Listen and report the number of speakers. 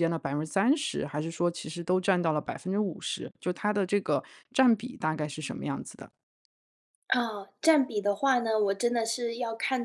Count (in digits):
2